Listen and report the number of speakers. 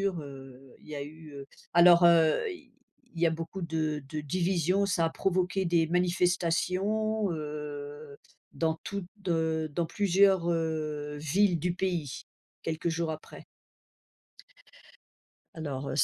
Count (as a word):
one